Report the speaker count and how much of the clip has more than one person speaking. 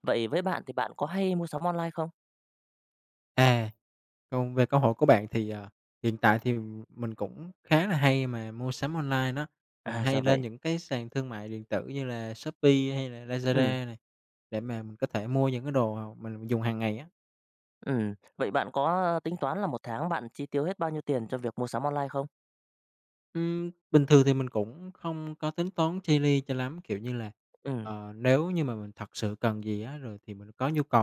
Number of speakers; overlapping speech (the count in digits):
2, about 3%